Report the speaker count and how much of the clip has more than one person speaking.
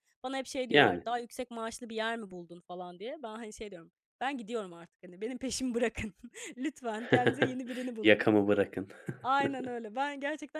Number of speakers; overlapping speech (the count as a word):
two, about 5%